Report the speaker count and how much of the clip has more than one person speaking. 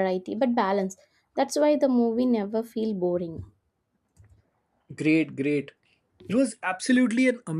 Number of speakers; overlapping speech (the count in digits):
2, no overlap